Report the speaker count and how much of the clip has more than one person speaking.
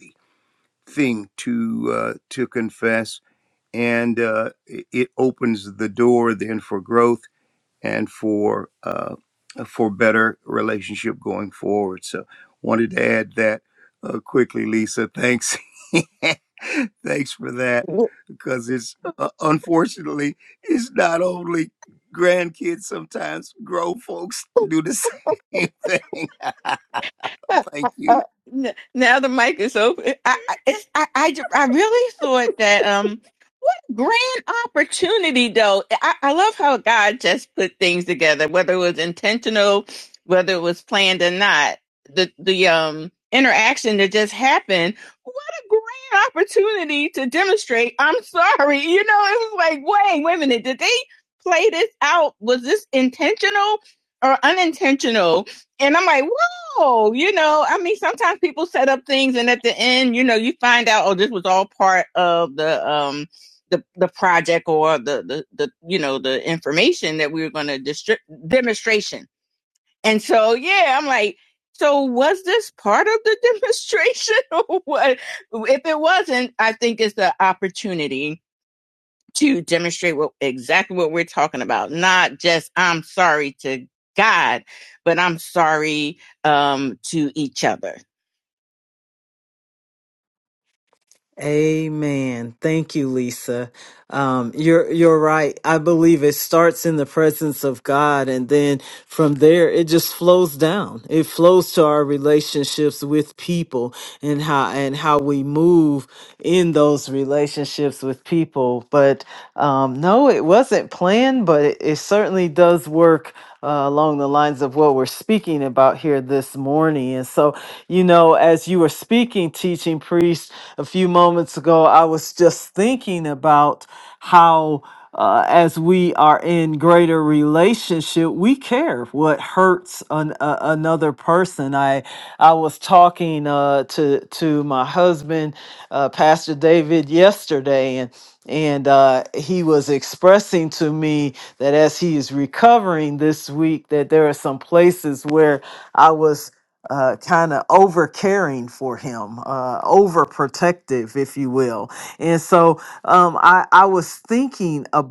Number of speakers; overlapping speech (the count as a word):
three, under 1%